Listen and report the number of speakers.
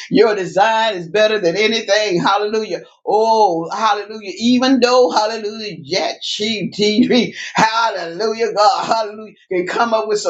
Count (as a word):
one